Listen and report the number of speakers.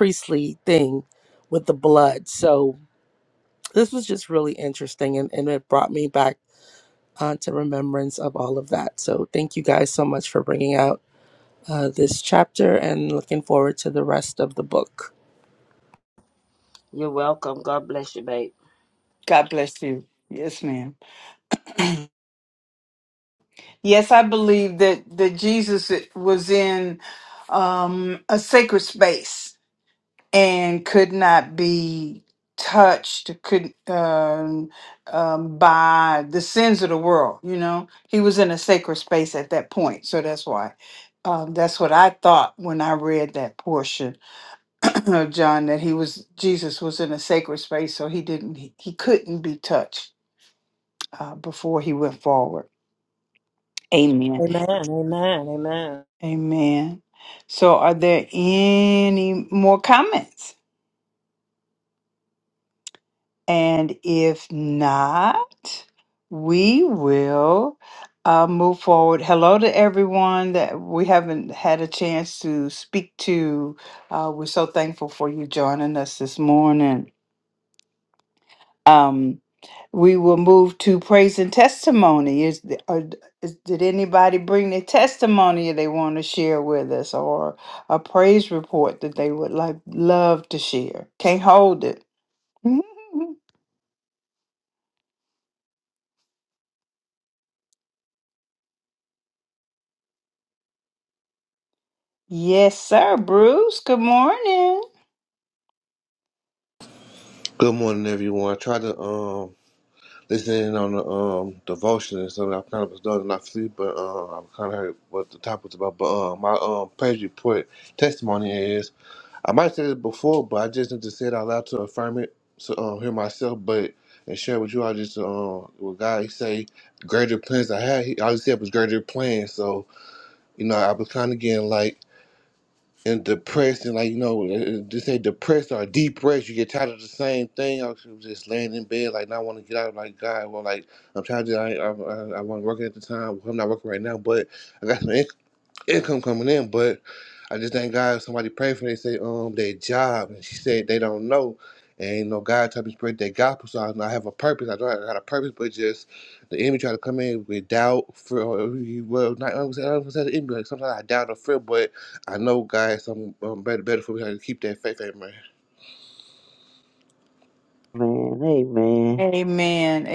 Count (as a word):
six